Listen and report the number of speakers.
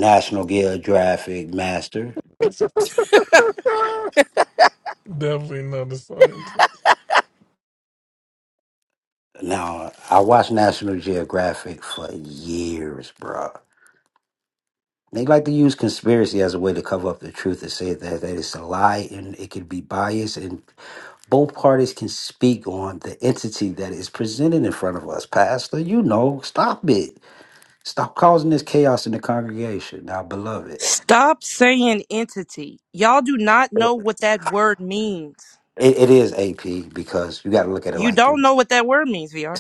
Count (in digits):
3